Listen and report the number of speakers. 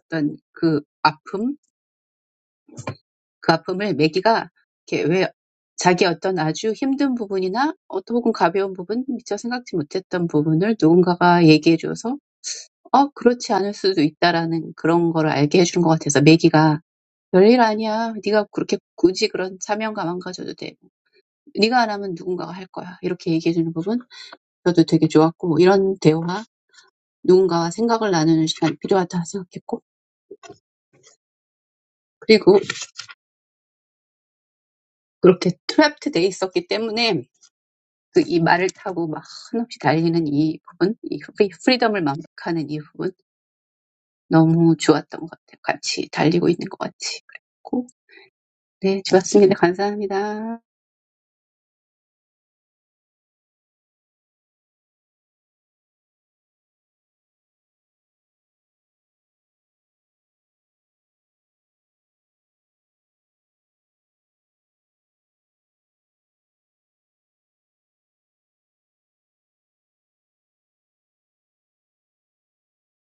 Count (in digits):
1